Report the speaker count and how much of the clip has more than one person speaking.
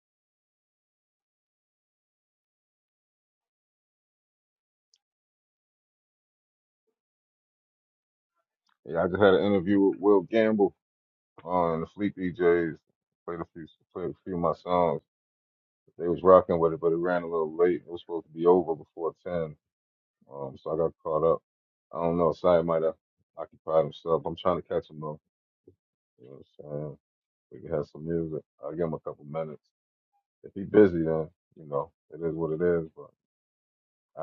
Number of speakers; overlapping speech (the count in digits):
1, no overlap